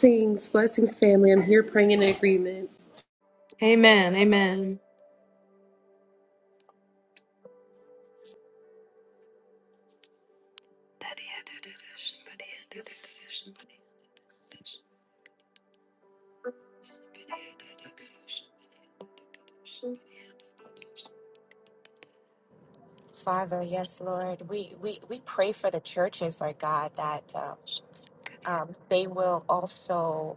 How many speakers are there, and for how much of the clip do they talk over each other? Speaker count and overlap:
three, no overlap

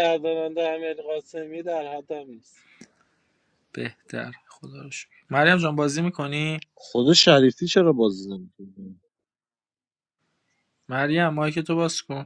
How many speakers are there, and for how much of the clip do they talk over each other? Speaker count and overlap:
three, no overlap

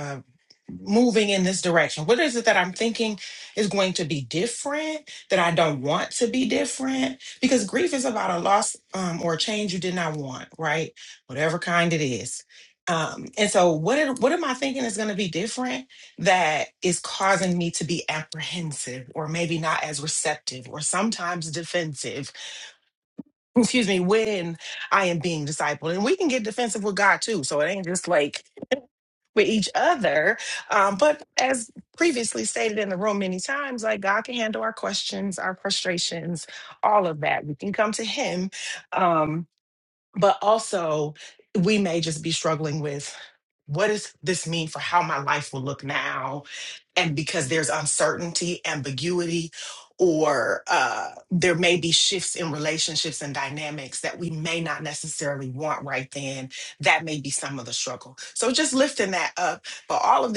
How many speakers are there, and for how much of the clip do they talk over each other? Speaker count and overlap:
one, no overlap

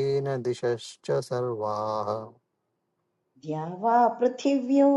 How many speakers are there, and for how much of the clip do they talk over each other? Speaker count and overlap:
two, no overlap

